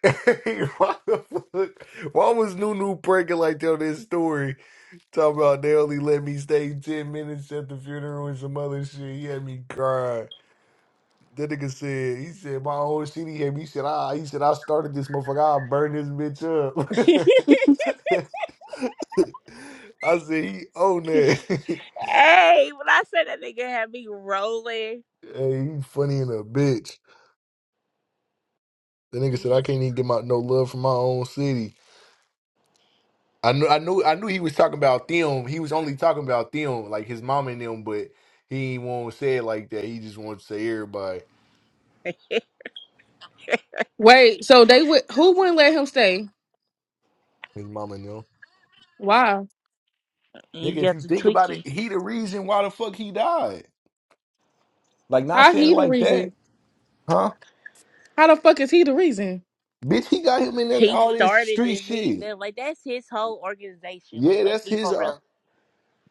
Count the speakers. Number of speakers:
three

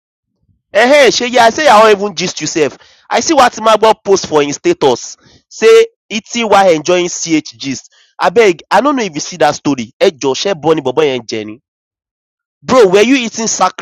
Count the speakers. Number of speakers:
one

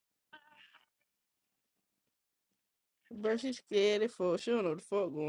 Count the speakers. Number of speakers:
one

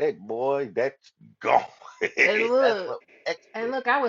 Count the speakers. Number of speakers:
two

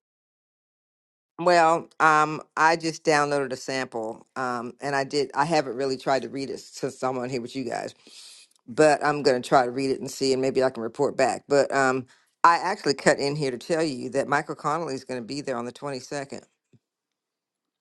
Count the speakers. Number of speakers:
one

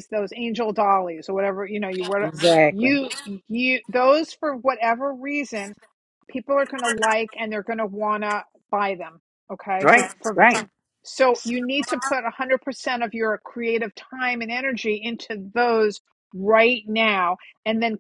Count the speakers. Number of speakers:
two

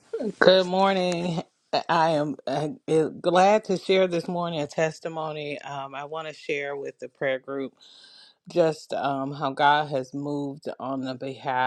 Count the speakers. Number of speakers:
one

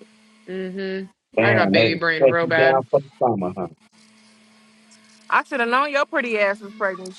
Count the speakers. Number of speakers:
three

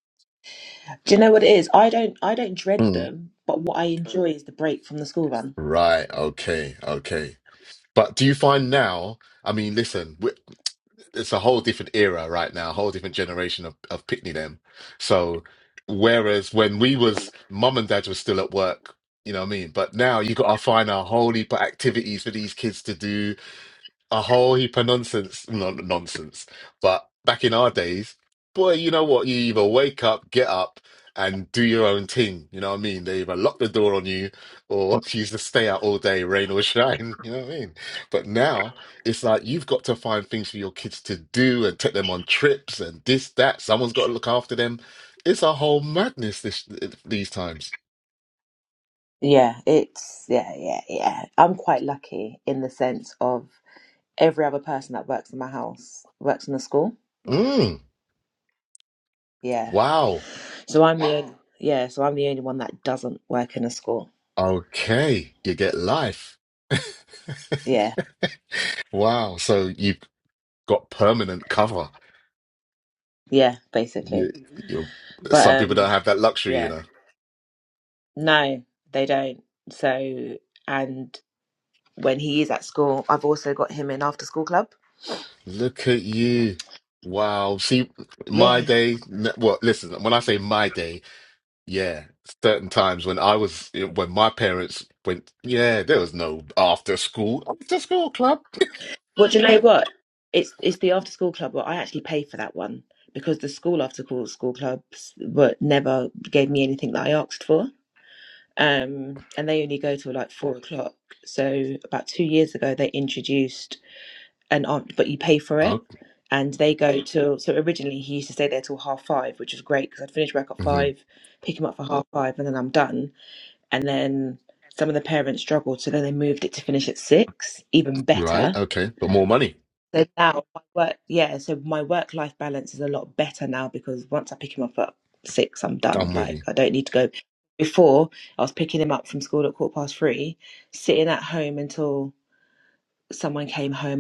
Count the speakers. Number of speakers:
two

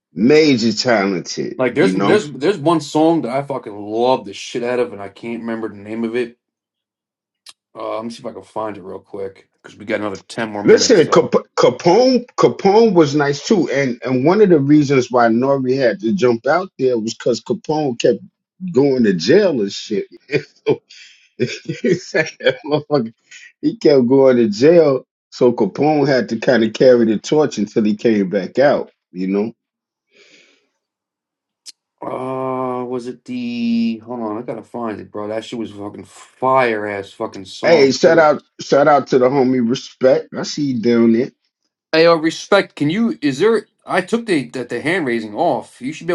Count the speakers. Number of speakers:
two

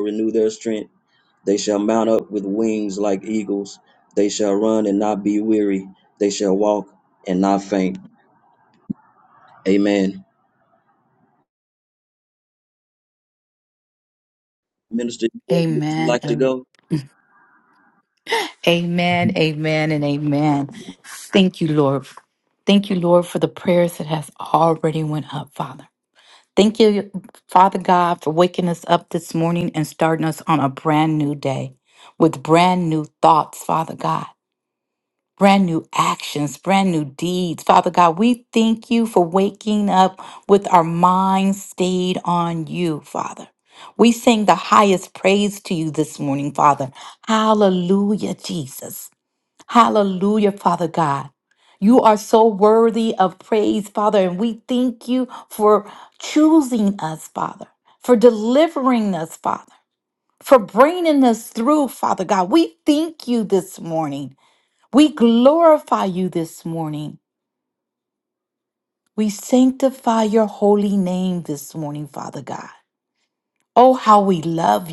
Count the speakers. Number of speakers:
two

